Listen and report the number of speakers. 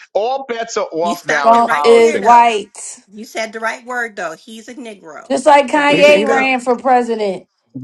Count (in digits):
3